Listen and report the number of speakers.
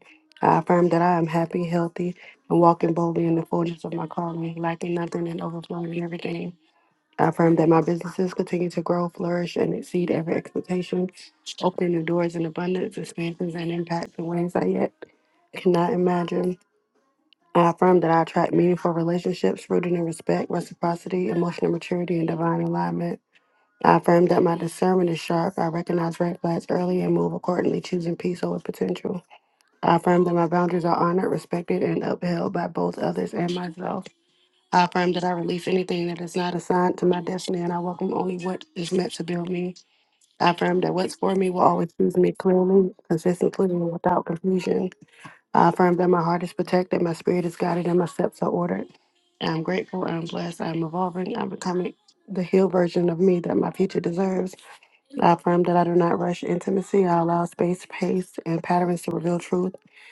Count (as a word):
one